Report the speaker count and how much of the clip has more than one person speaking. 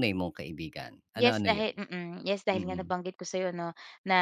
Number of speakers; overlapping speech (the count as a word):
two, about 19%